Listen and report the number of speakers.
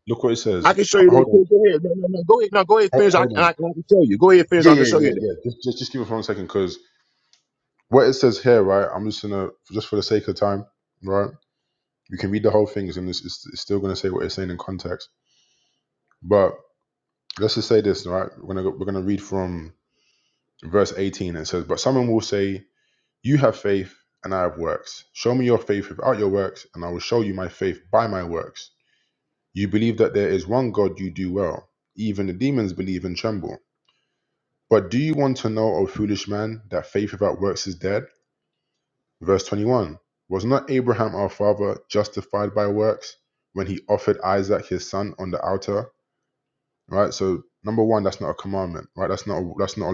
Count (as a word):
two